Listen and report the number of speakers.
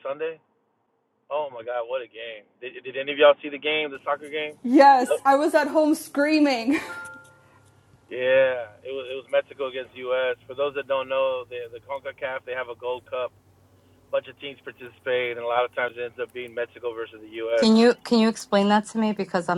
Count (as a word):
three